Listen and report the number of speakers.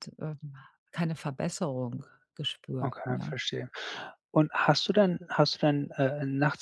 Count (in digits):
2